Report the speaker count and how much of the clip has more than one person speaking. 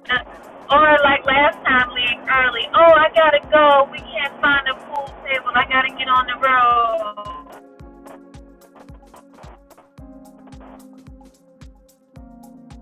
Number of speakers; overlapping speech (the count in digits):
1, no overlap